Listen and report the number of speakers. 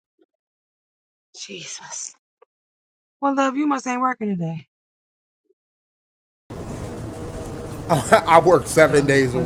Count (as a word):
two